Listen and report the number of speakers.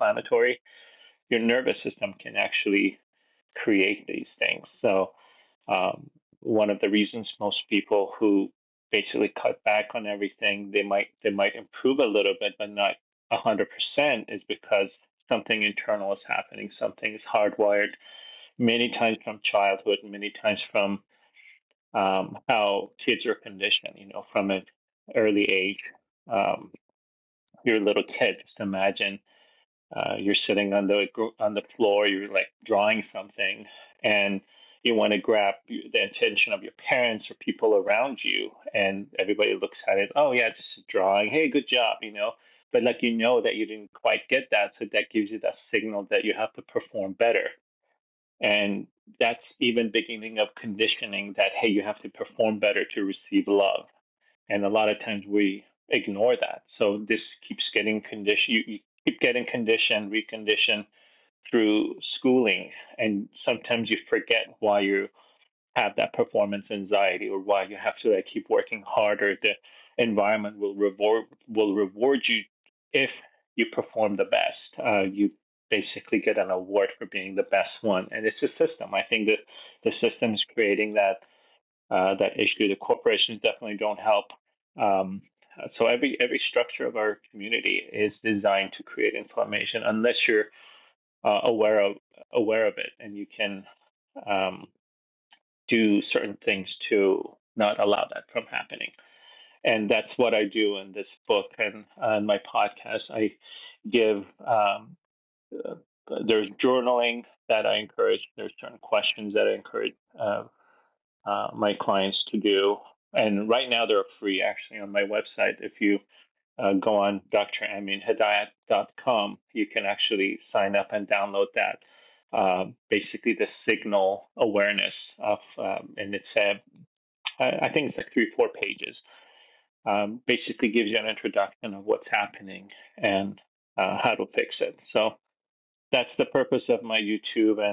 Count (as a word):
one